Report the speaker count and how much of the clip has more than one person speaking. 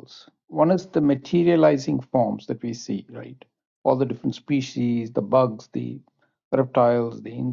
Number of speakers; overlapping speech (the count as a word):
one, no overlap